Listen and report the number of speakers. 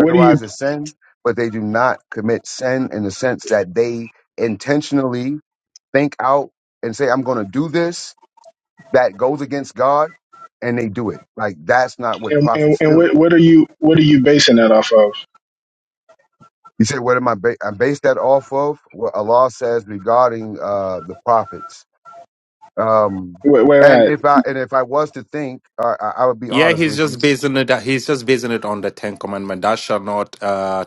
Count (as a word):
three